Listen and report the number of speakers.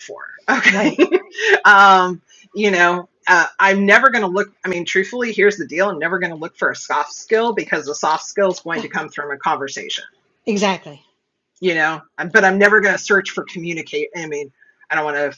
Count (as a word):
two